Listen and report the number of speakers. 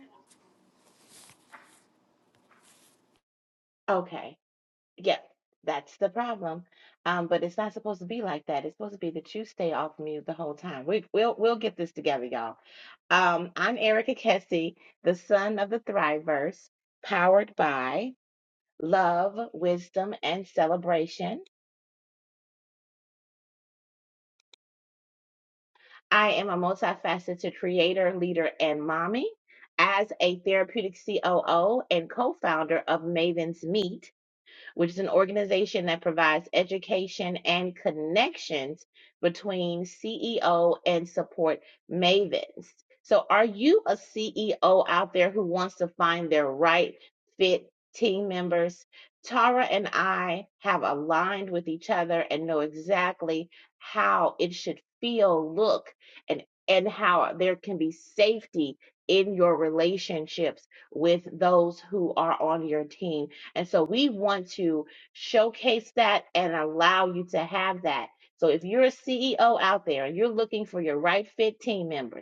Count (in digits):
1